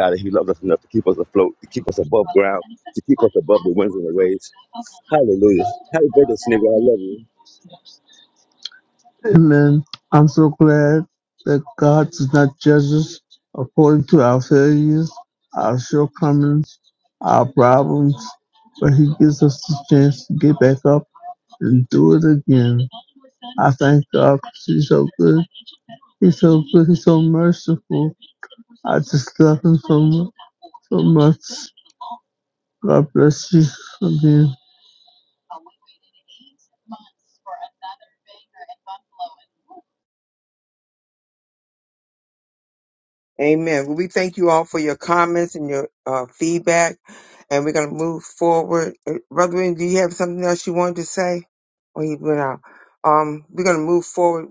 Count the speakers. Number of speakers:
three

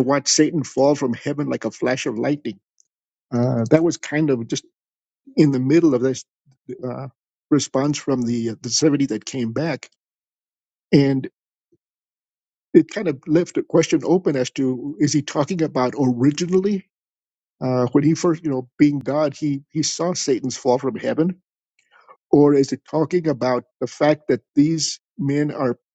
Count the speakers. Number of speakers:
one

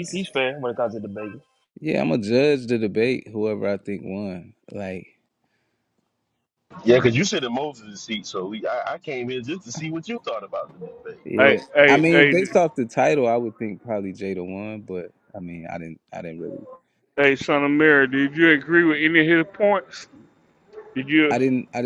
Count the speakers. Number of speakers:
four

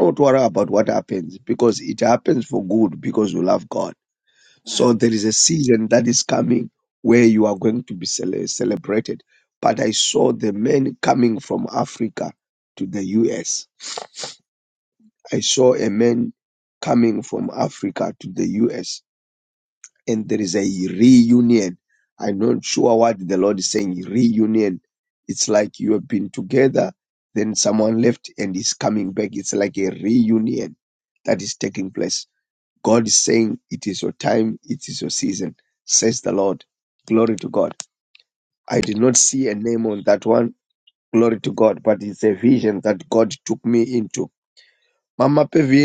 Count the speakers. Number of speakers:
one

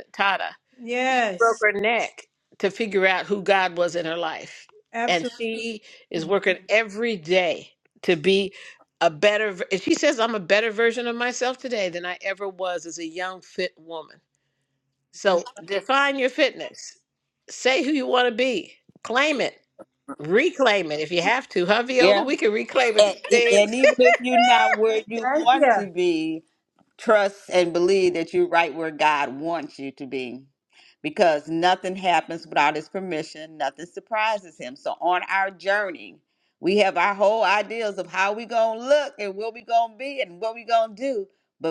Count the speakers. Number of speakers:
three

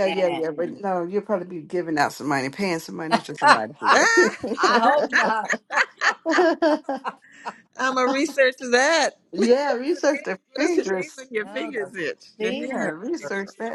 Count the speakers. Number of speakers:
three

